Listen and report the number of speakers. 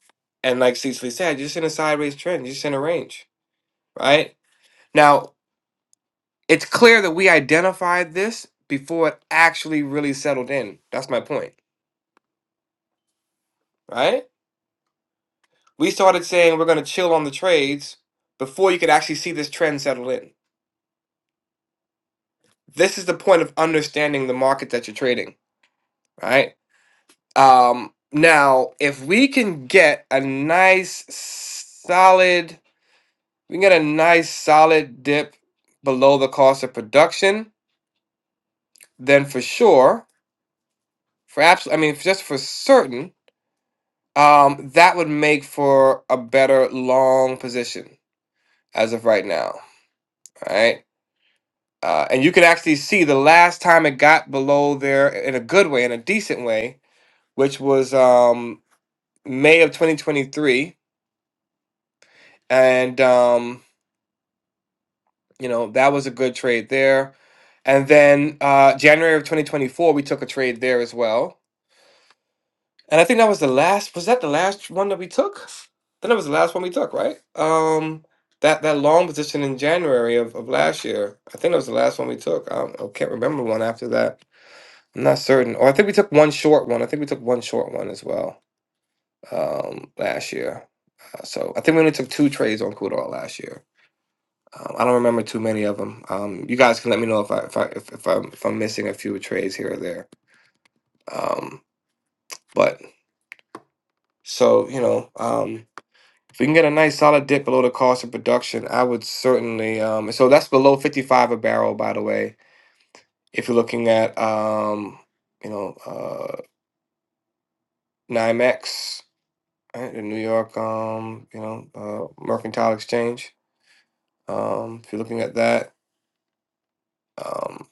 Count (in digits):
1